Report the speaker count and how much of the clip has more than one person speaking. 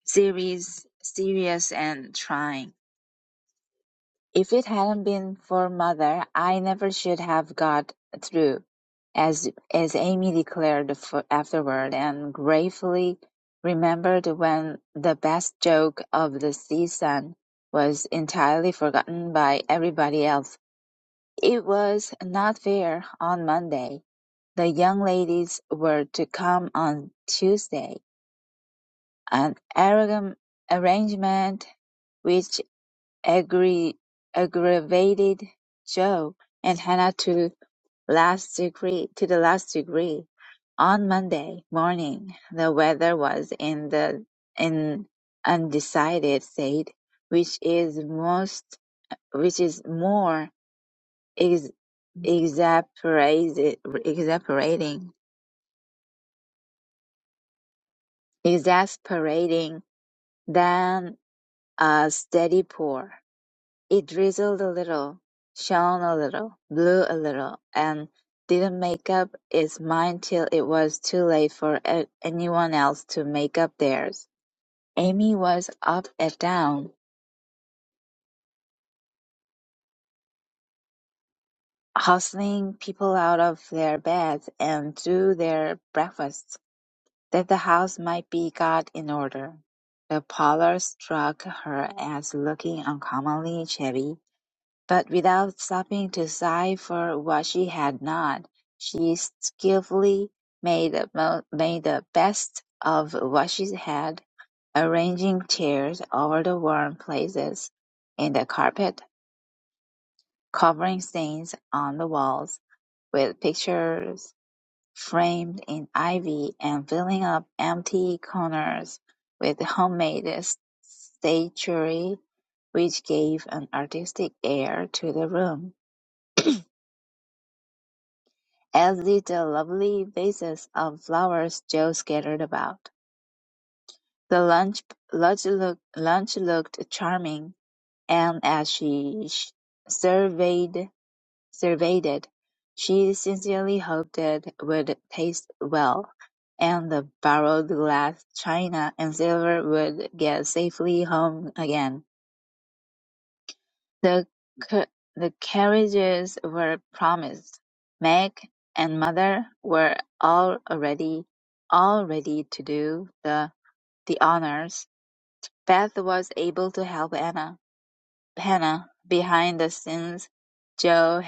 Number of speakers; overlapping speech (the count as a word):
one, no overlap